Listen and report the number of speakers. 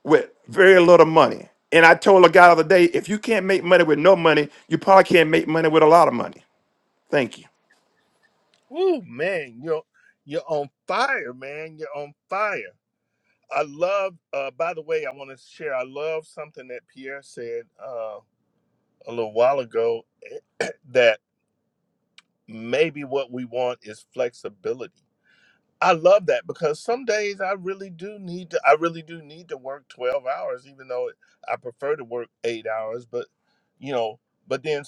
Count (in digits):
2